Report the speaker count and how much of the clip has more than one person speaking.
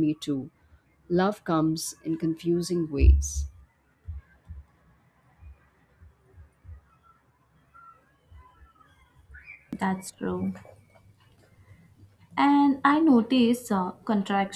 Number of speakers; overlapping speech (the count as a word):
two, no overlap